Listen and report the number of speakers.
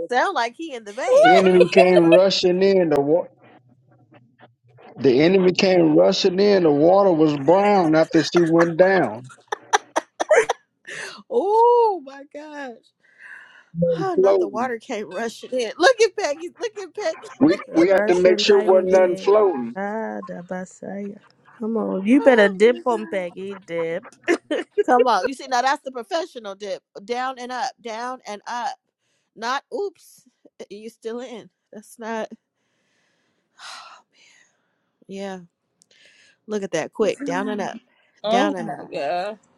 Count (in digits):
4